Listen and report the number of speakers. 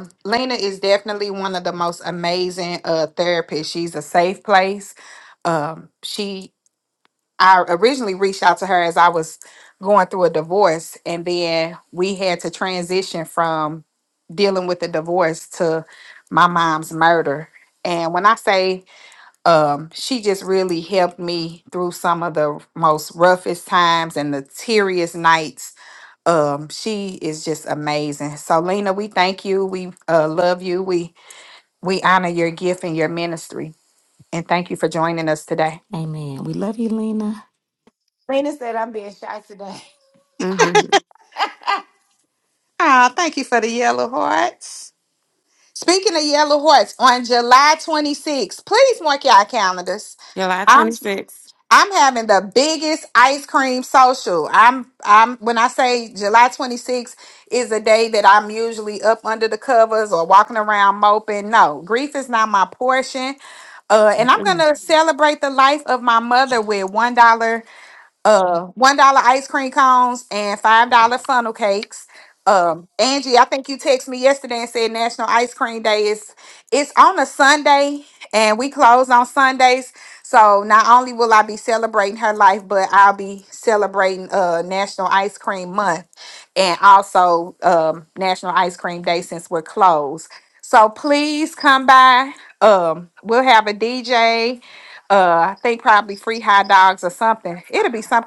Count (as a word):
four